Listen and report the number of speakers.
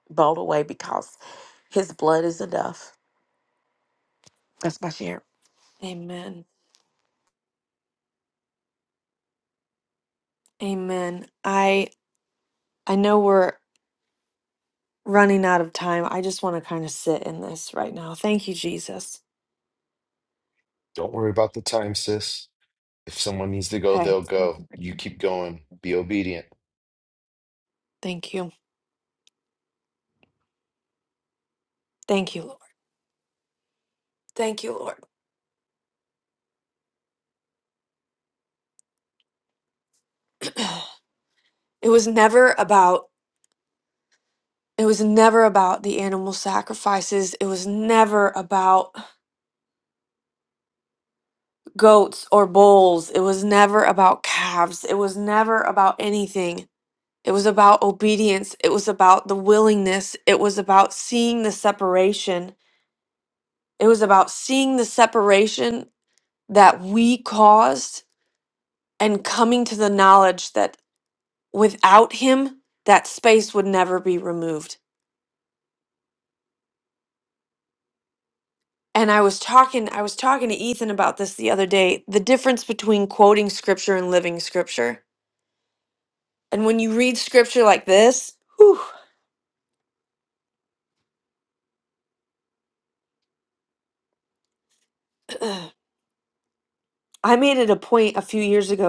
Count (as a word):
three